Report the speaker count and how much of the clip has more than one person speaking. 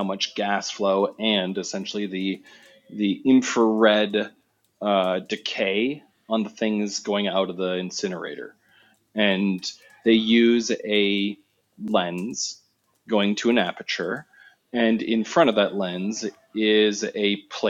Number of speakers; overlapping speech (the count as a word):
one, no overlap